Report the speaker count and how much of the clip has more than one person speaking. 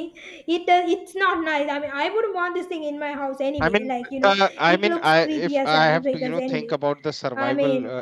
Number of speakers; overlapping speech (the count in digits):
2, about 47%